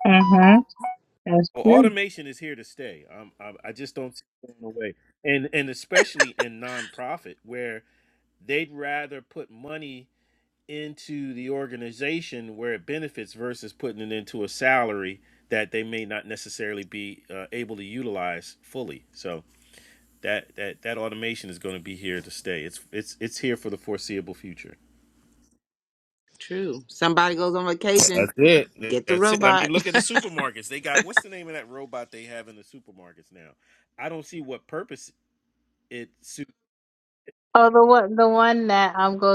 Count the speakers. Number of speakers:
3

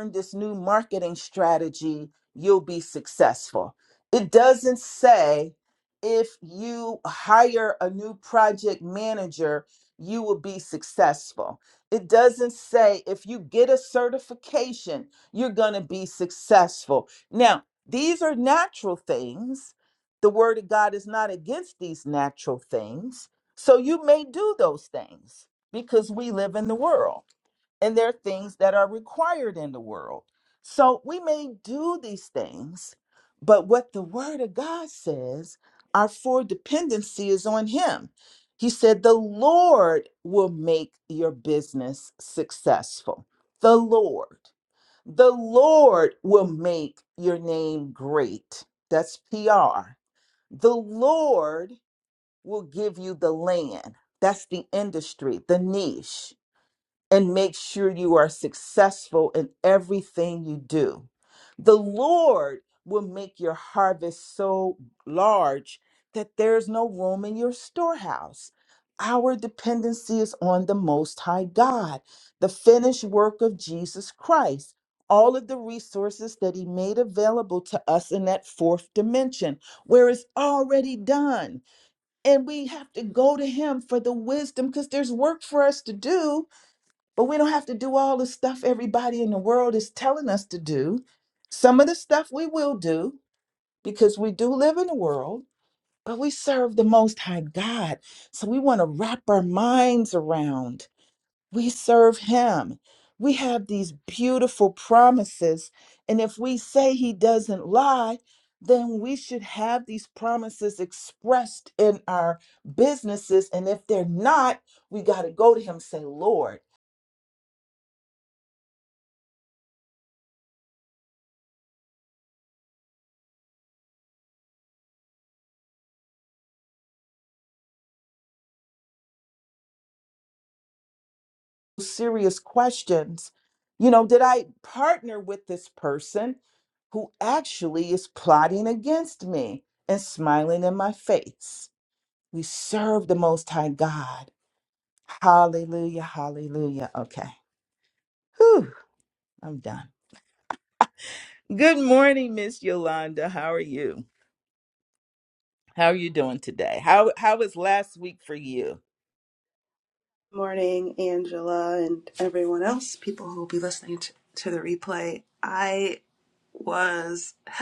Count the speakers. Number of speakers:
2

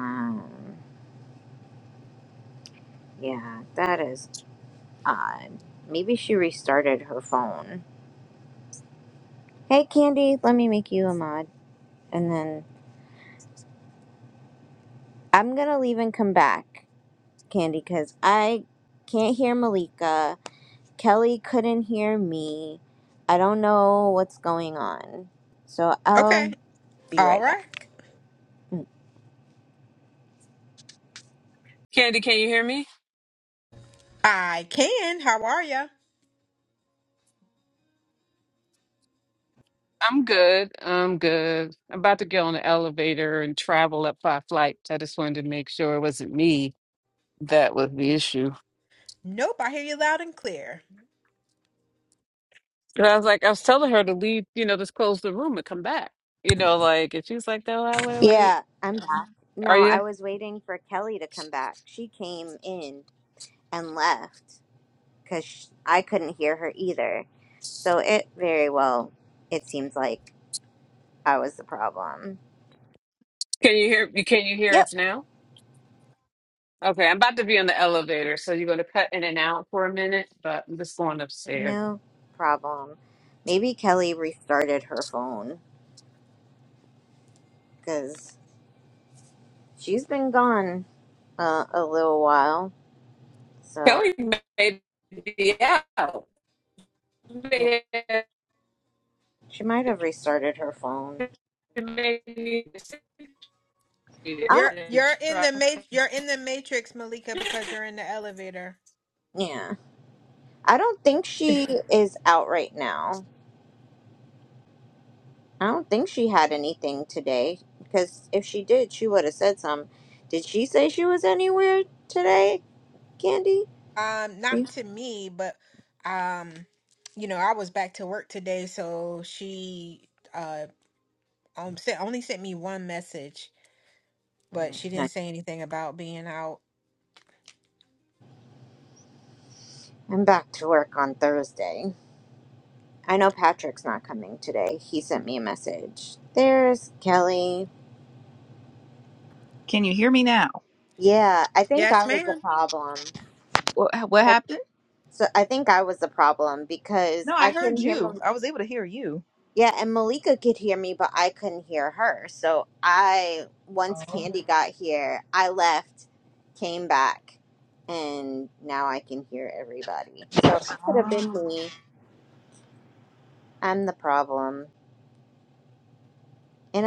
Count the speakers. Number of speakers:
4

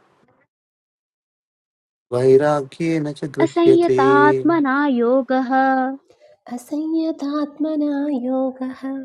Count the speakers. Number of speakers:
3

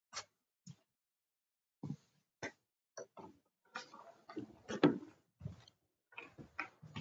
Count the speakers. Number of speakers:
0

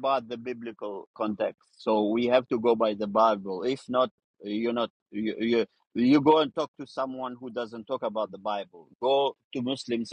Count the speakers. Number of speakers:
1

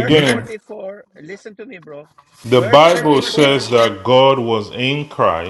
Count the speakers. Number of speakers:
2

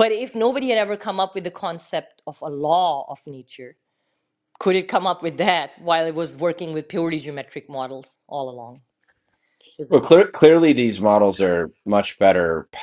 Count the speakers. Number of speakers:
2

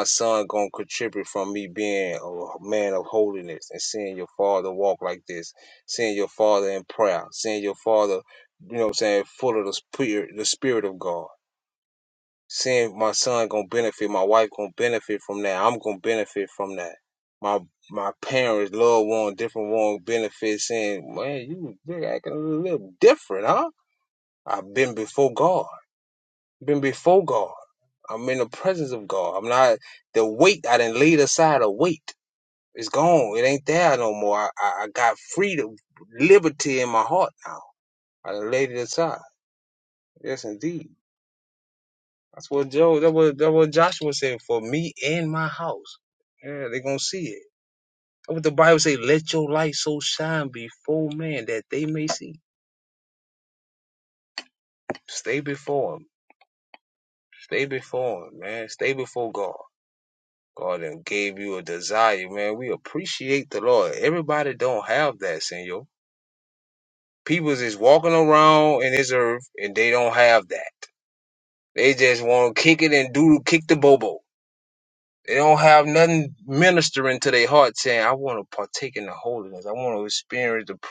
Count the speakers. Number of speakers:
1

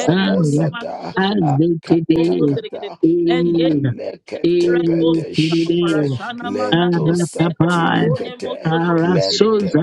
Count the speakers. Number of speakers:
3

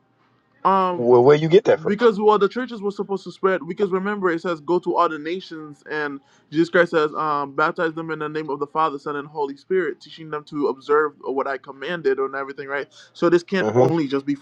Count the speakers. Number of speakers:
2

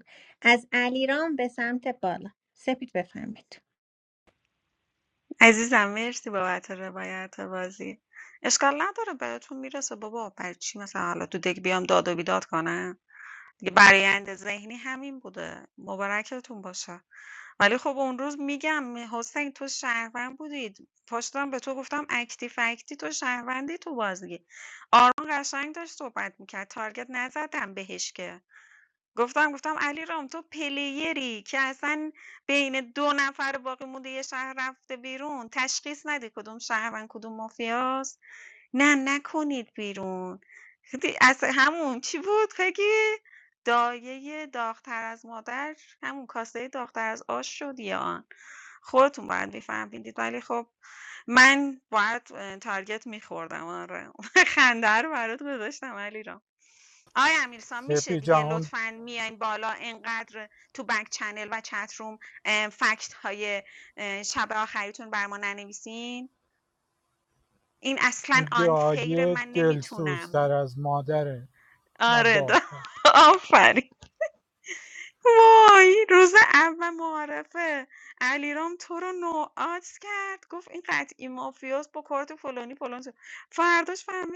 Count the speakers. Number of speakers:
3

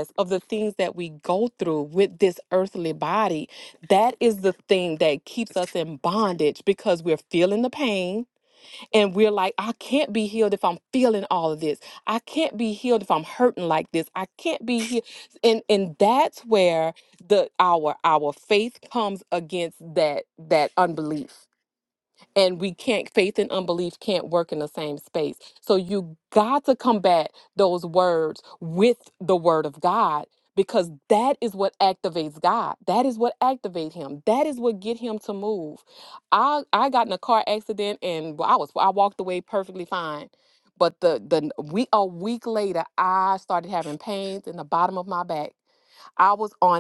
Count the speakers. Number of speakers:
1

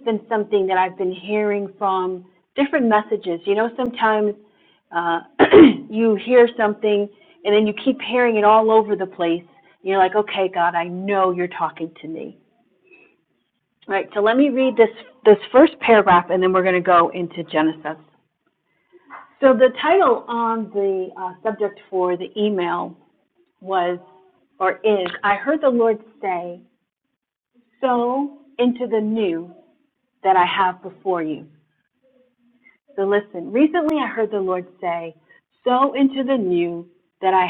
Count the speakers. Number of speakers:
1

